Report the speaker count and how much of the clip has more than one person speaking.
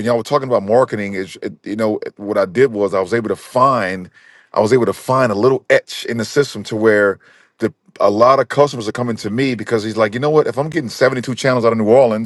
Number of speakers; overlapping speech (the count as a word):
one, no overlap